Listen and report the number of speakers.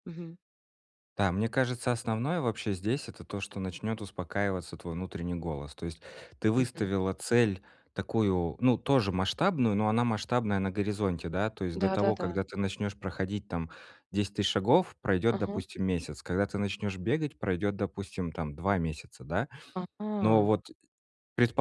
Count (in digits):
2